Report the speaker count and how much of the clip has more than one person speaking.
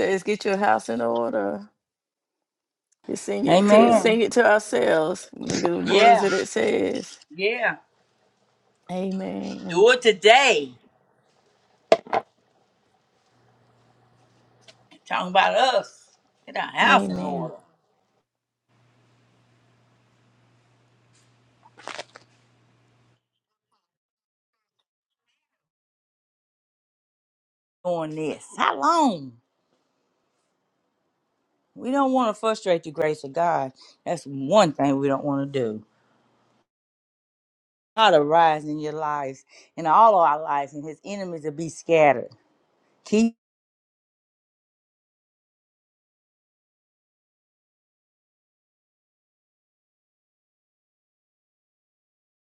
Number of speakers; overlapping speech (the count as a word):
two, about 4%